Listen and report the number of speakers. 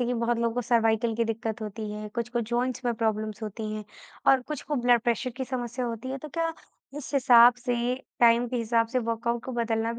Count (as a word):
one